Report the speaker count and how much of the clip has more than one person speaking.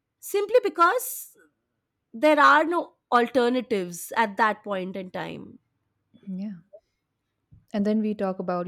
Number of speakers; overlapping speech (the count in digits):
2, no overlap